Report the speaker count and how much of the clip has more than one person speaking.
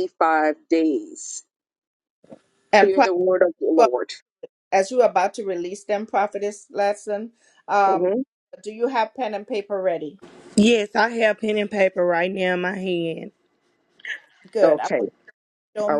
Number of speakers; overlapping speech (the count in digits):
3, about 7%